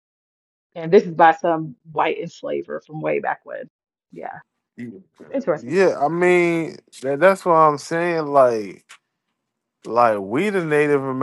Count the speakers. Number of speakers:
2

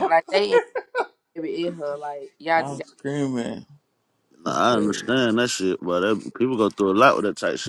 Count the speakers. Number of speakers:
3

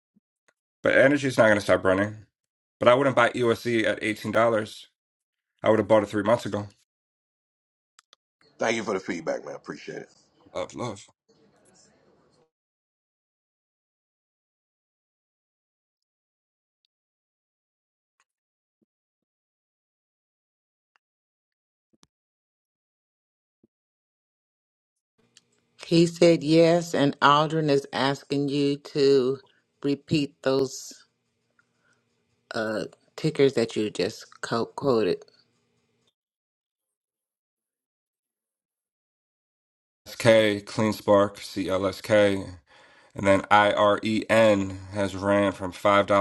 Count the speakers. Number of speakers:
3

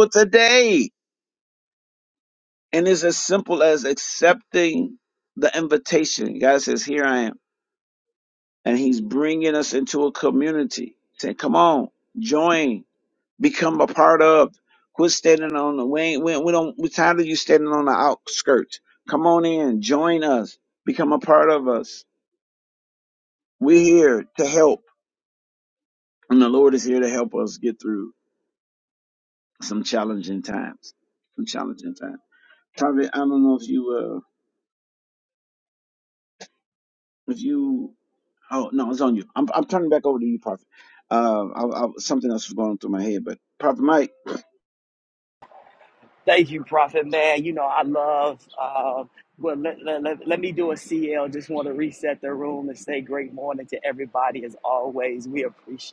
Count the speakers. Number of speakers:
2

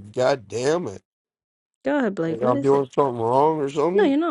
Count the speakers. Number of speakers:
2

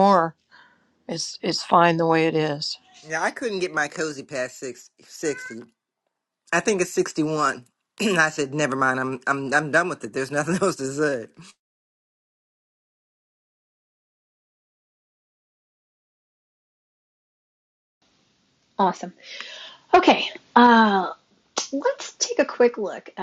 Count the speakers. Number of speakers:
3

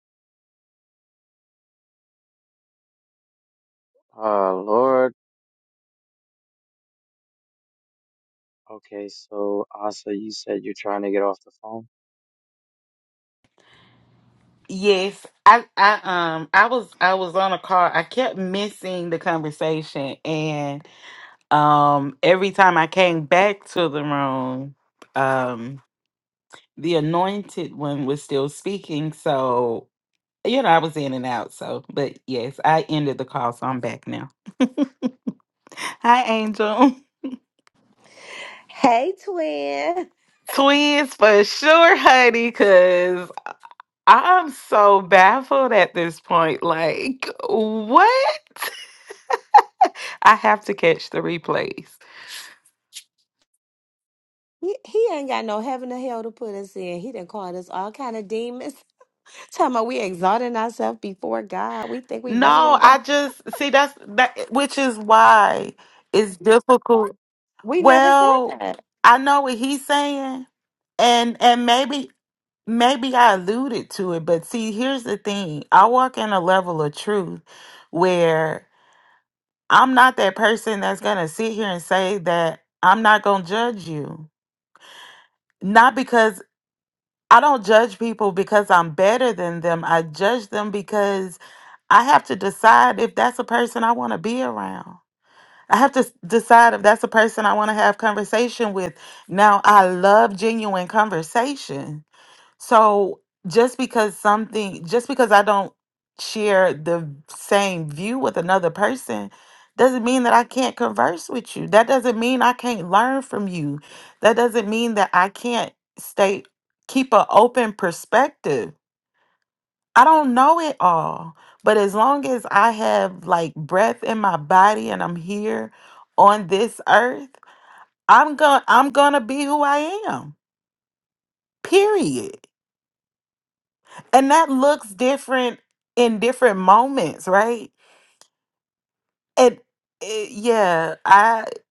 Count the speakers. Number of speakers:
3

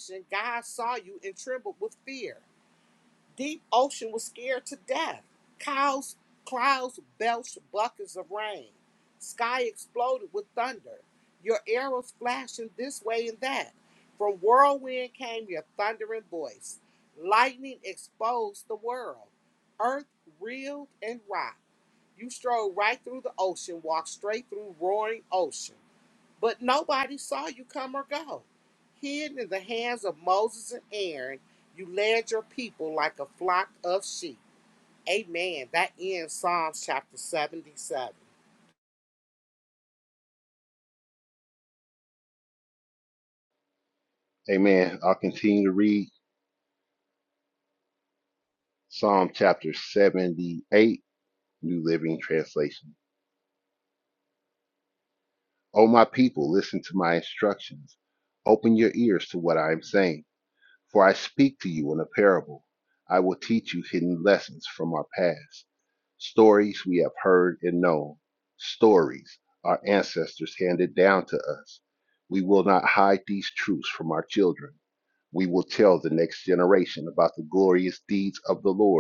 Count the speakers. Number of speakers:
2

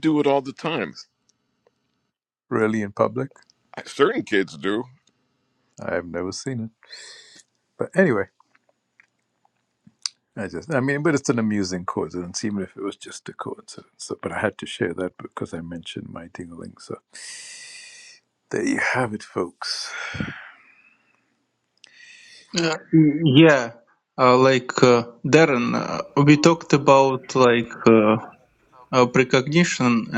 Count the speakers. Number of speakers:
3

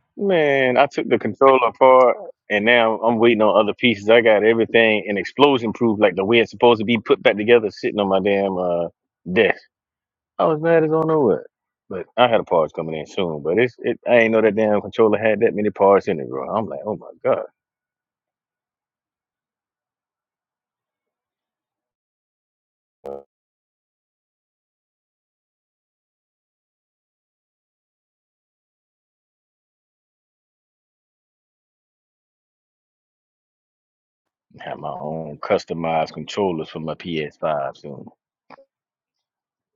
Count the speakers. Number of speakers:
1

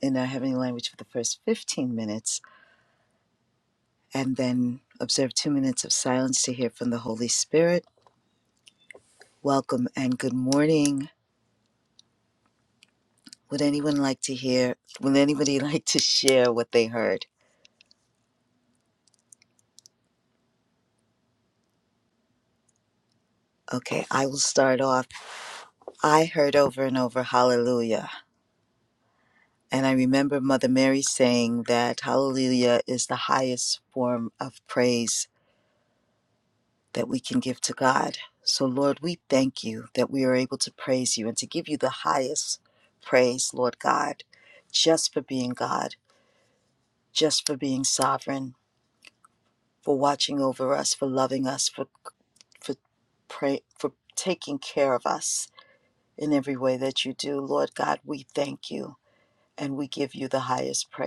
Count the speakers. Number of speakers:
1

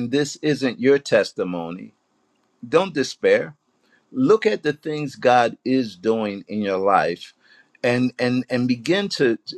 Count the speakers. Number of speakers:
1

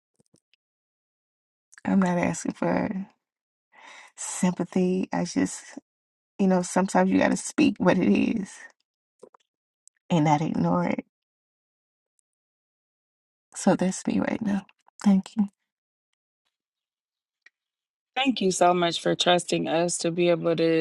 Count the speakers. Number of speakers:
2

